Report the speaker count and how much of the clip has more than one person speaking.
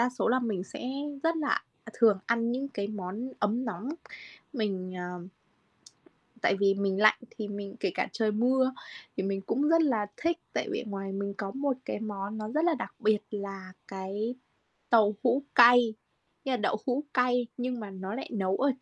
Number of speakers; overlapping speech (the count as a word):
one, no overlap